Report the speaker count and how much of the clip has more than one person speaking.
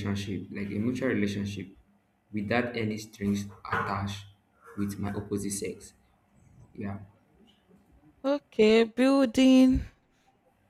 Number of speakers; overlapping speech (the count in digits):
2, no overlap